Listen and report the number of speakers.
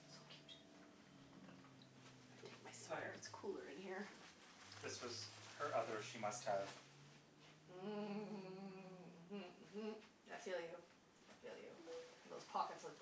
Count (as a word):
two